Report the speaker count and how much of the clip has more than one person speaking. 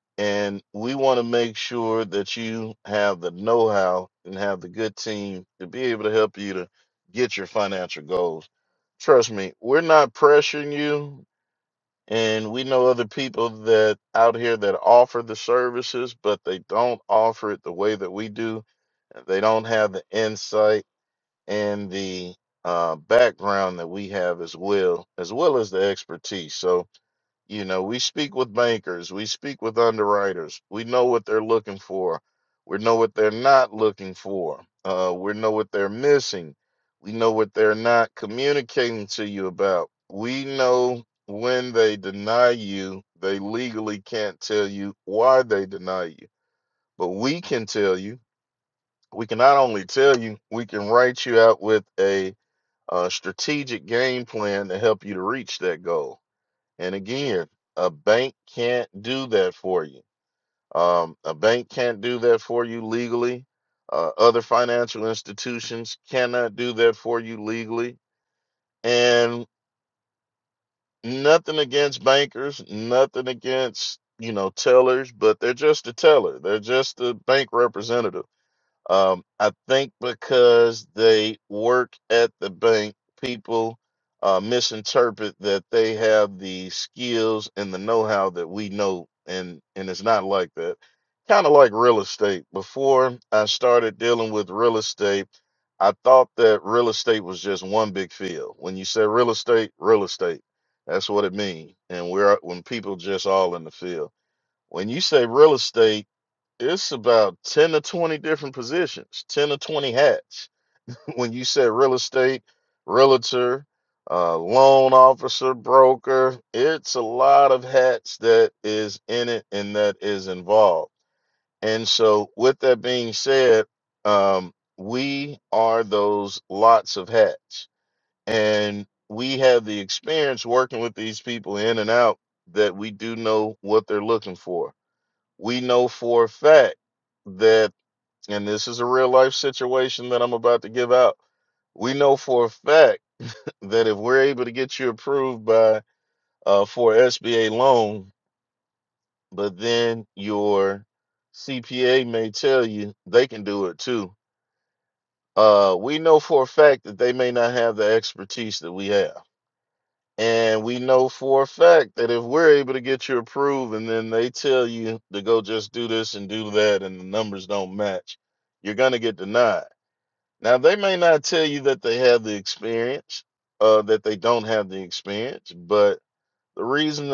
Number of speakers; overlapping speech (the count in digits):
1, no overlap